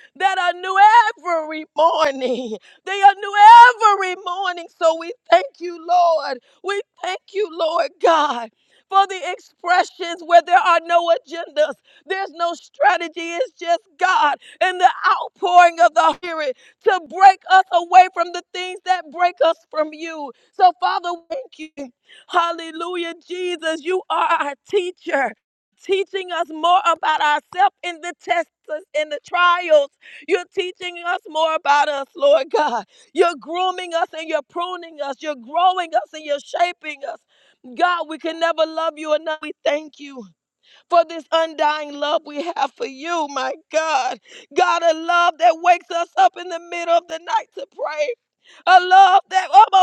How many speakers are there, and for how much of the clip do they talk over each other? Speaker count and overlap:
1, no overlap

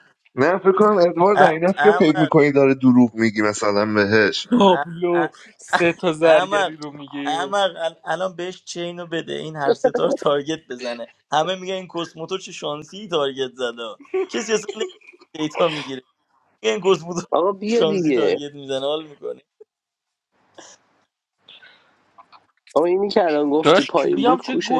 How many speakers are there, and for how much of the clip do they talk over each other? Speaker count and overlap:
4, about 17%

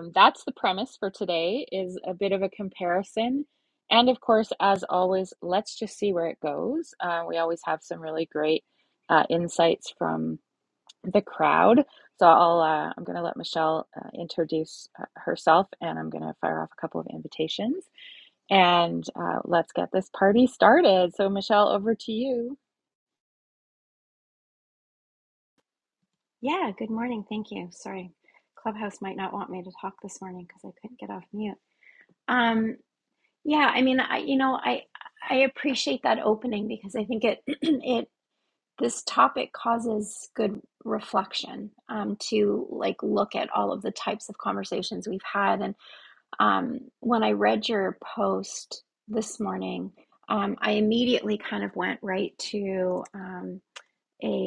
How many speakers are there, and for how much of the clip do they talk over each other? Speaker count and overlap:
2, no overlap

